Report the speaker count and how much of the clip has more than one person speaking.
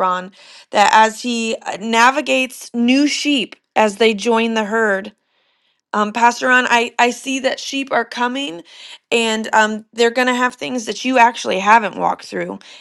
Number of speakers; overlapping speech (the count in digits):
1, no overlap